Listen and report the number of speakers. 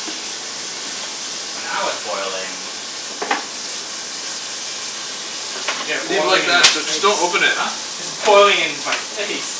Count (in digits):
3